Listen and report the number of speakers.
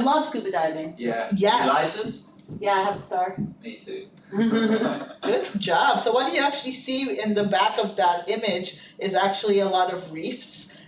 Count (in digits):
3